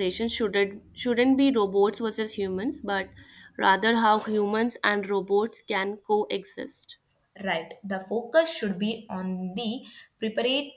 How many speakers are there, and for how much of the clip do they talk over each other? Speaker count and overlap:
two, no overlap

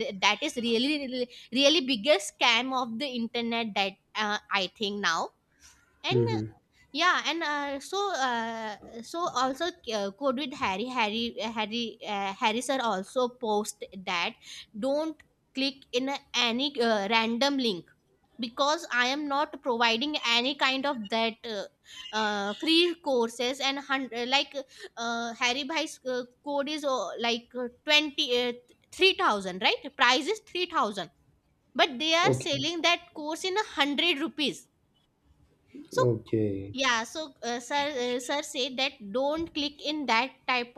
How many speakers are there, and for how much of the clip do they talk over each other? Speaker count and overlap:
two, about 1%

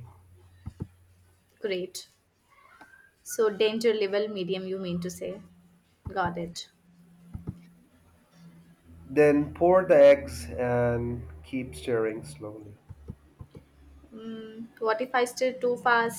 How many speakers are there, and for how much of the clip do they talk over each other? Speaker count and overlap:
two, no overlap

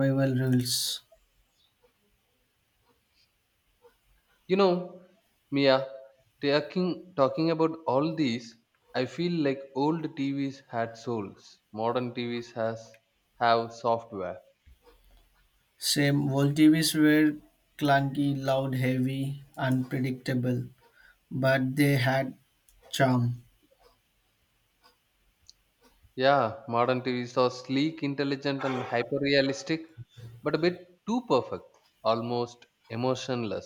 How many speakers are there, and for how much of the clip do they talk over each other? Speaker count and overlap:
two, no overlap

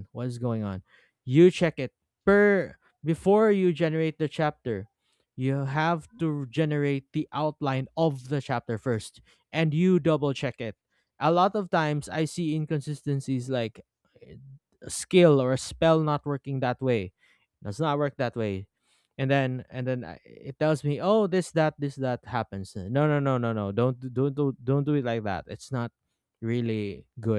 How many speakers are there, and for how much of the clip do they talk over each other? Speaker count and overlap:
one, no overlap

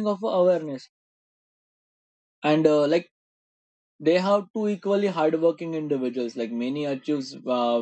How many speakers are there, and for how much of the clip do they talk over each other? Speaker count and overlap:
one, no overlap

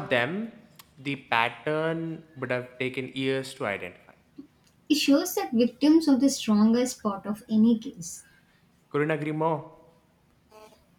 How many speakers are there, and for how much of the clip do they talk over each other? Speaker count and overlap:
two, no overlap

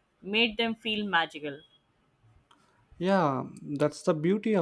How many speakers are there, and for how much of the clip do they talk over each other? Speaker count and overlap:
two, no overlap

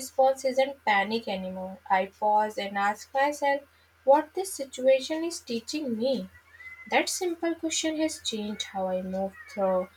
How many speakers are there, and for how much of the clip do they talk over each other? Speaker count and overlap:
one, no overlap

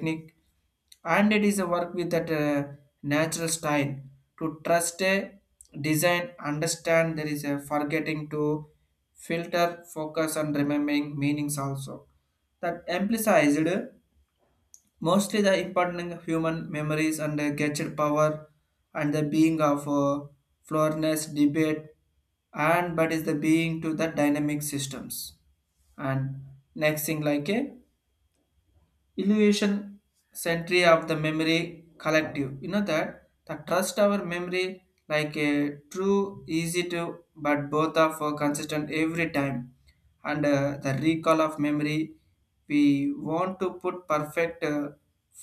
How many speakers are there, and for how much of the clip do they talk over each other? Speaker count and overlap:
one, no overlap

